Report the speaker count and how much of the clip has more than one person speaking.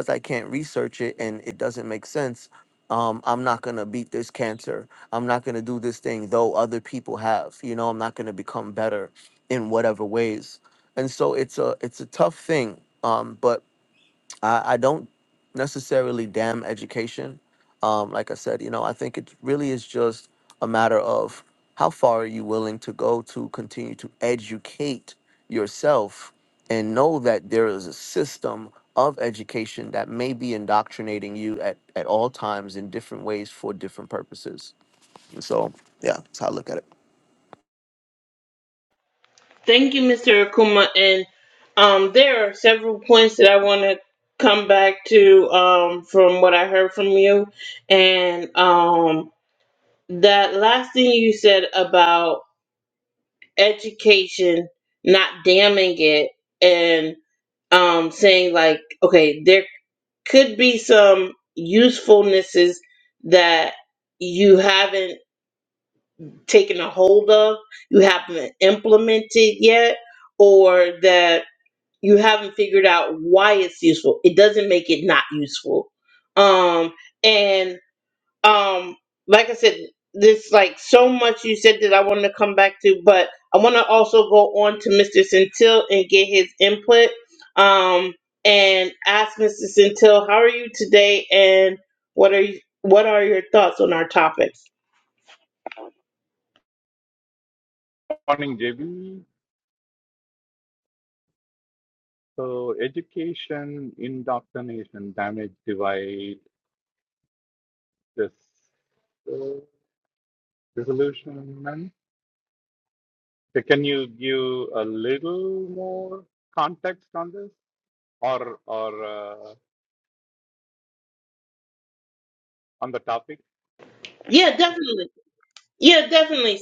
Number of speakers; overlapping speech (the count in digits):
3, no overlap